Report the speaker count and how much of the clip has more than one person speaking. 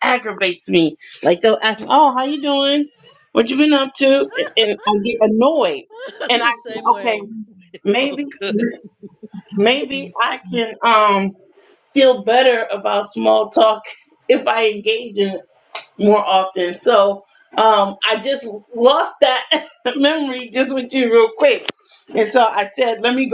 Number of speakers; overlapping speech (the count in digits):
2, about 6%